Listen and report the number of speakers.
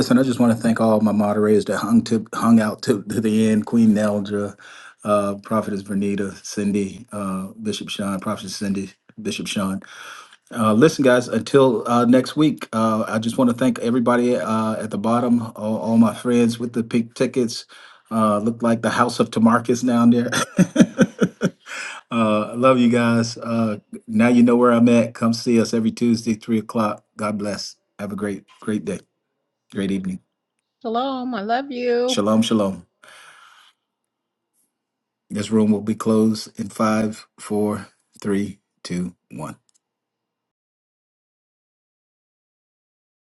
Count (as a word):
two